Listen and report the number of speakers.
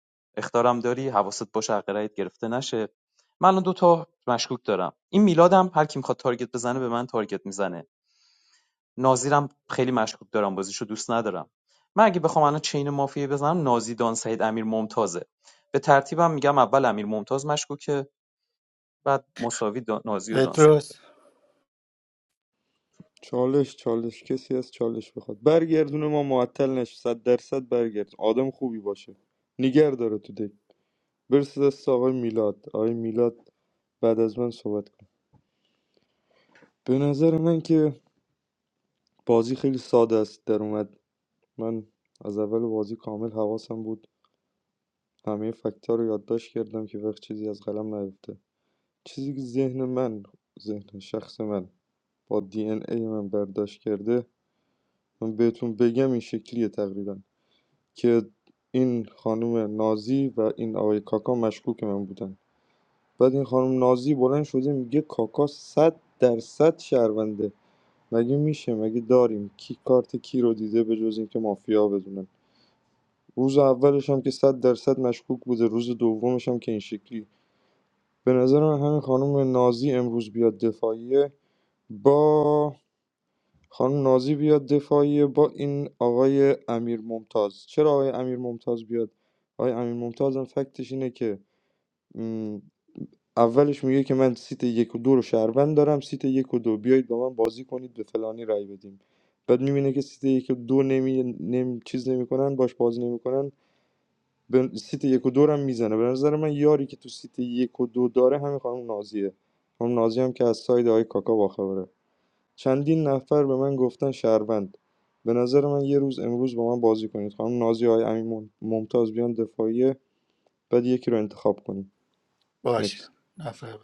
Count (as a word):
three